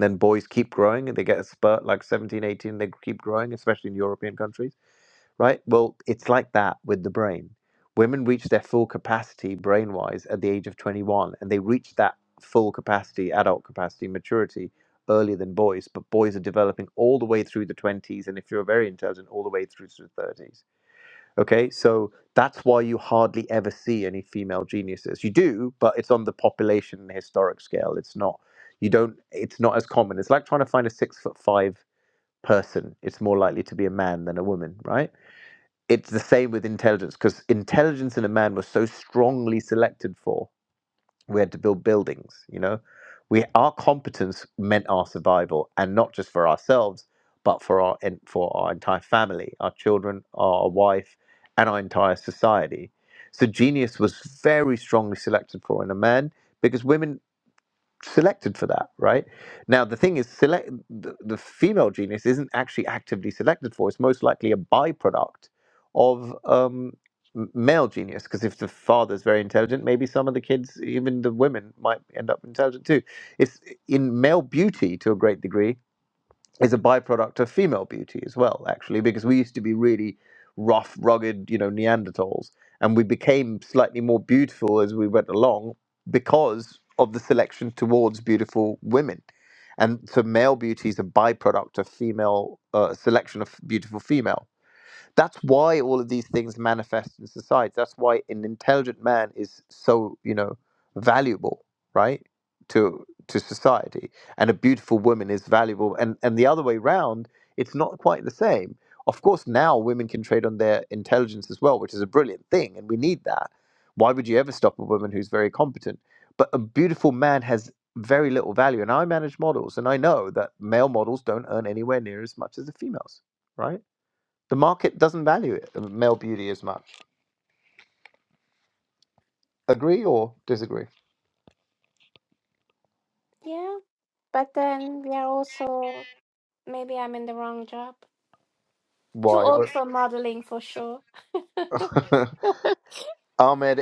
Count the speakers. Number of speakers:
two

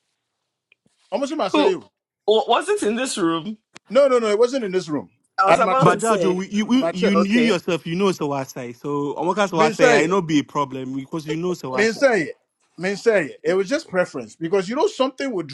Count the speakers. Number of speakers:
three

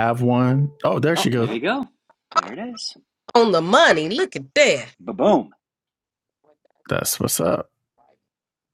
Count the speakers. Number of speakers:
three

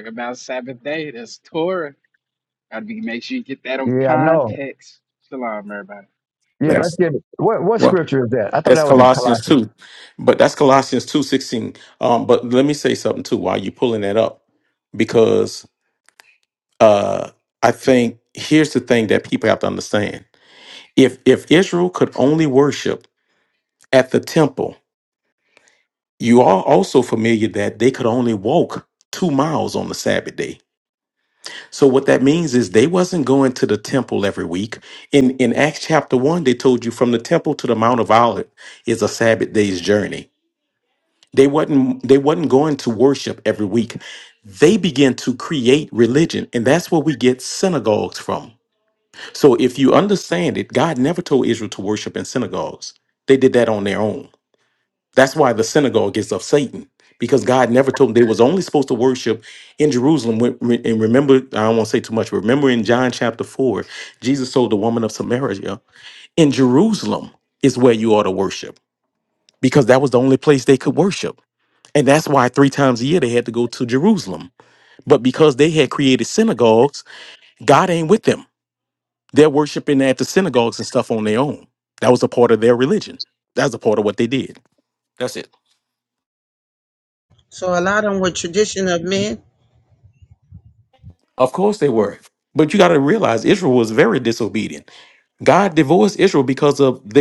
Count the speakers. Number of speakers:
four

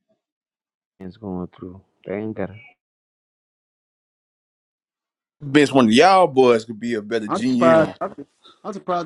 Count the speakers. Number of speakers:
three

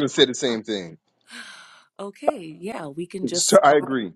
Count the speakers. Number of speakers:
two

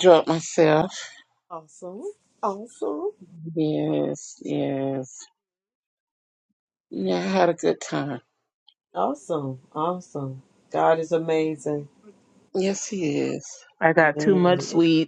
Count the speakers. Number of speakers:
three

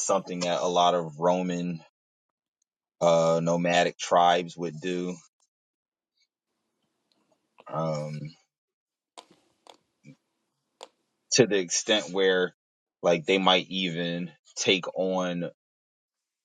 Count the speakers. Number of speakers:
one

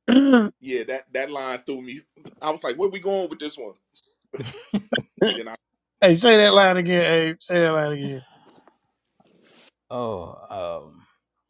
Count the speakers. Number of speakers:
three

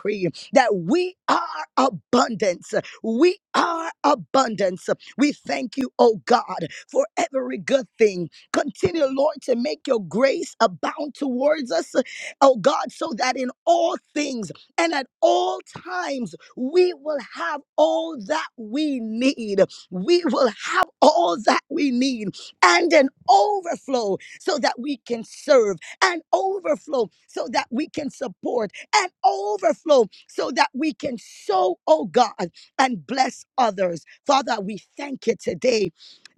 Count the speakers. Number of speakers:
one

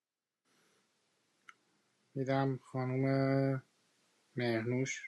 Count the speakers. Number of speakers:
one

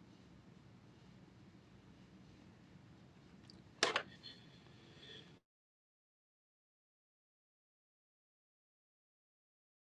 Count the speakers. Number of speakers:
zero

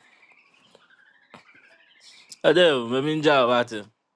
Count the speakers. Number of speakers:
one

